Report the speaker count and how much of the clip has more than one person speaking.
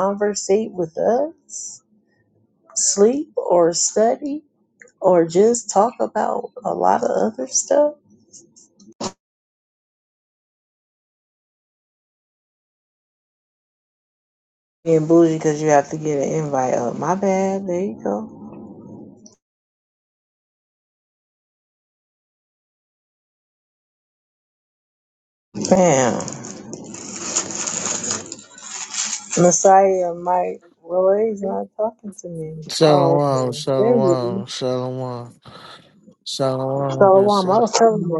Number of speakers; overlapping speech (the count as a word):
two, about 7%